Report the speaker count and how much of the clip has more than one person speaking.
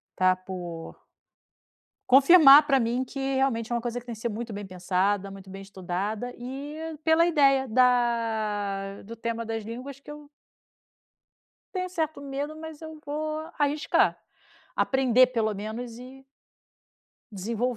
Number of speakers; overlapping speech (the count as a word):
one, no overlap